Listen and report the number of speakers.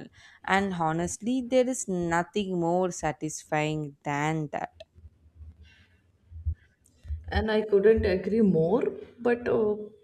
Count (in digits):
2